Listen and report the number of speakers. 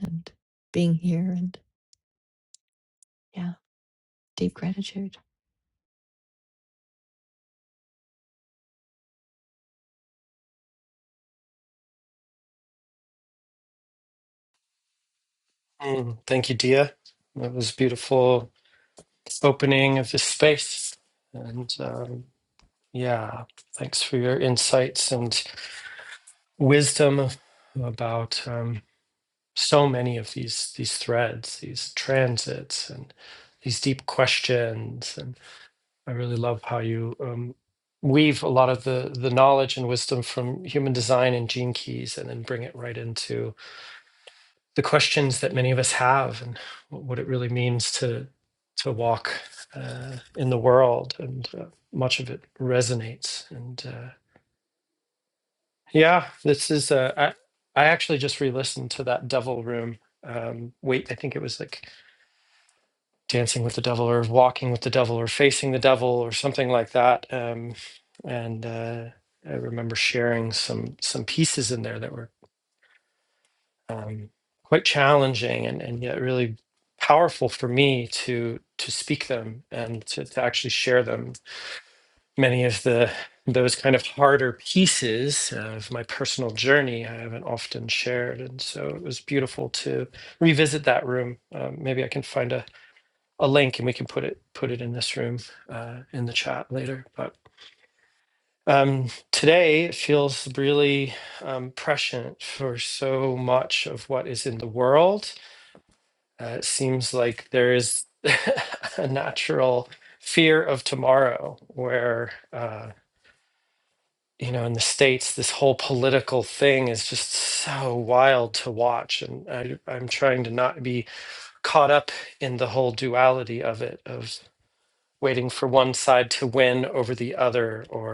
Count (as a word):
two